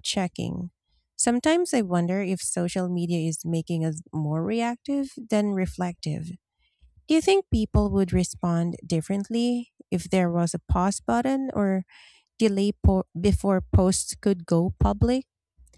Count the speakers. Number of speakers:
1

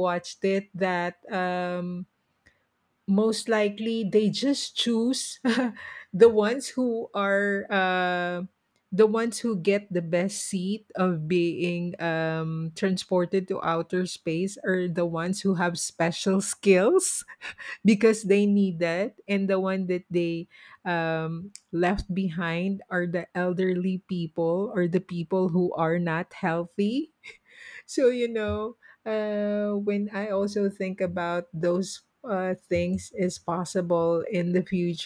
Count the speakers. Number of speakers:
1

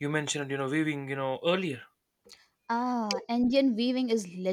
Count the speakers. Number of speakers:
2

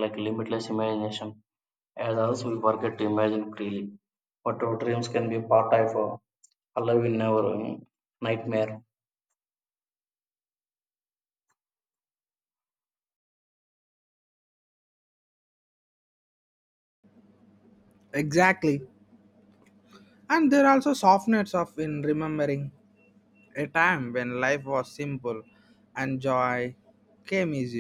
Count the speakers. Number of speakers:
2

